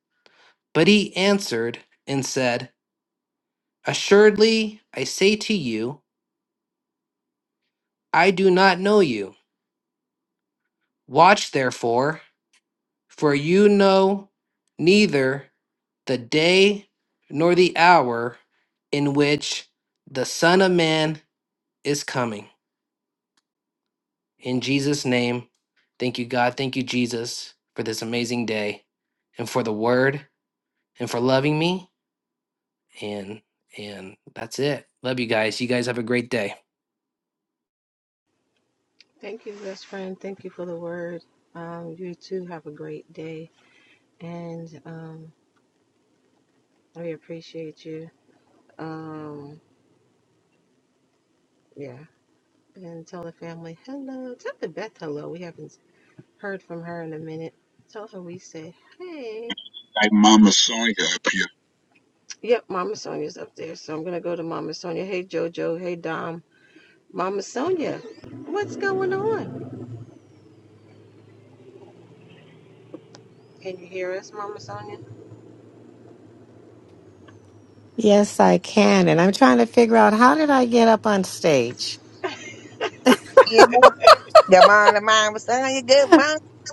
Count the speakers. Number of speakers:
five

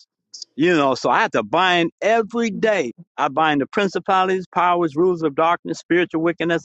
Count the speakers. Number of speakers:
one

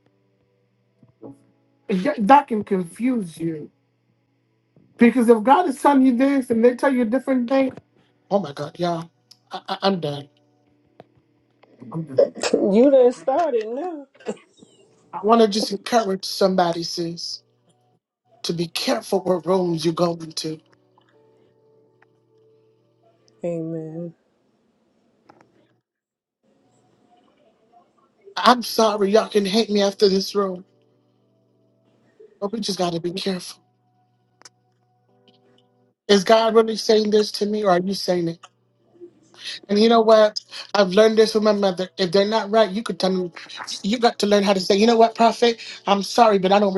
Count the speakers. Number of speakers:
two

